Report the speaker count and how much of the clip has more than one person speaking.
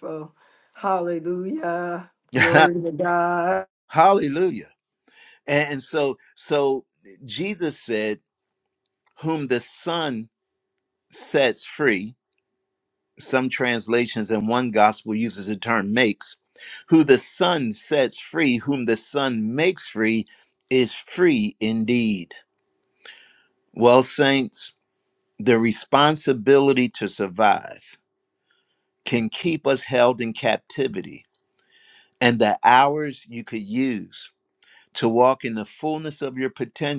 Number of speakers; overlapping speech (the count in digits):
2, no overlap